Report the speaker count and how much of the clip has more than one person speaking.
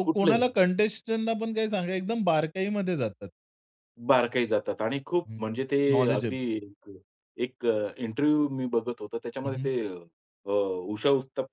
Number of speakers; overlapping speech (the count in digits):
2, about 10%